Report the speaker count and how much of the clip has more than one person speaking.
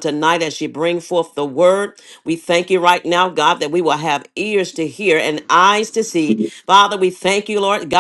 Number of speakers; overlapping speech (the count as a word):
one, no overlap